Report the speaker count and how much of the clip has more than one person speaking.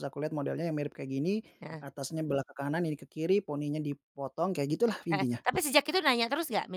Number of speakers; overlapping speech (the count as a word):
two, about 4%